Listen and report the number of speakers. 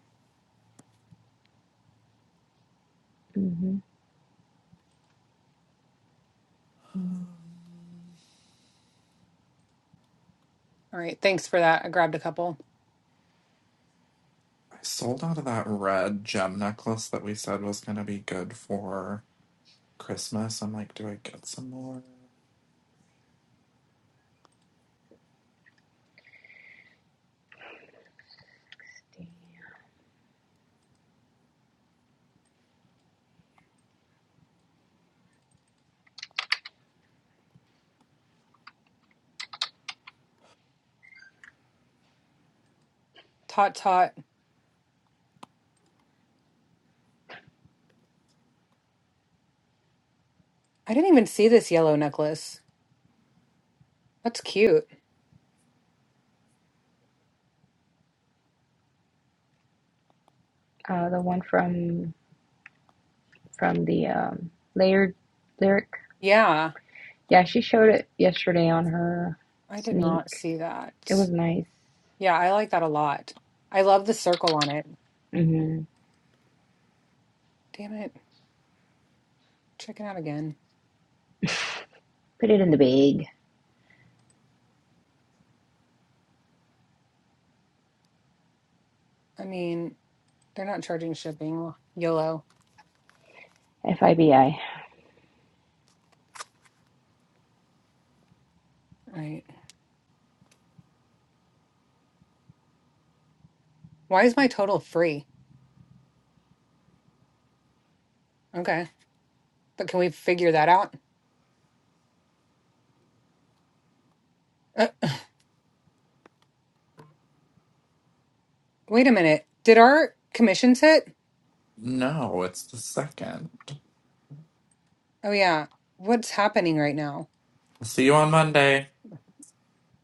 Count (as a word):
three